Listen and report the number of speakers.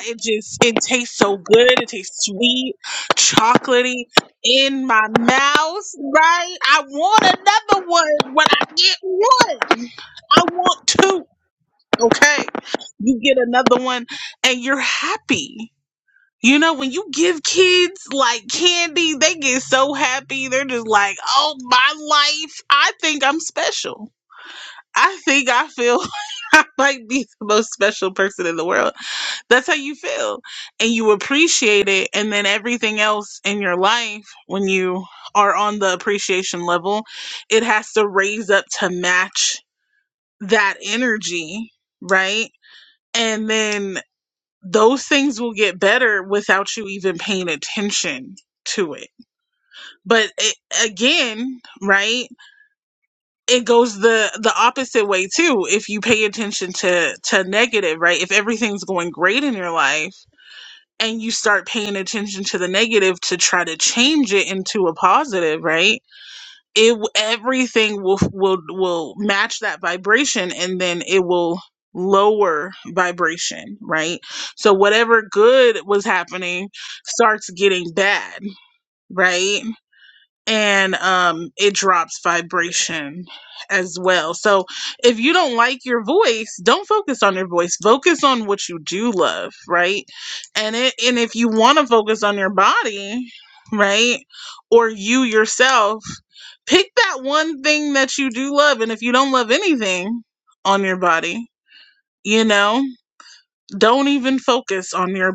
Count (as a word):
one